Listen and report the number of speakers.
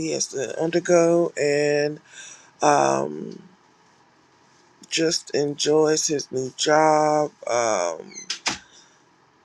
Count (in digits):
1